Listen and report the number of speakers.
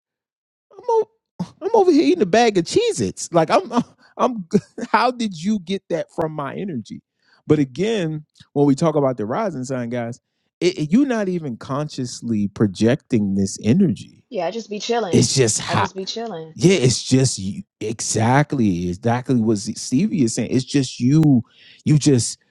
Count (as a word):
two